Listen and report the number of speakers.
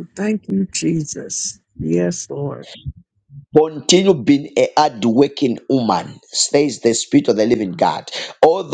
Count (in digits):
2